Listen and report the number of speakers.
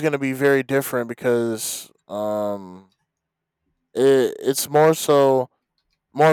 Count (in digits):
1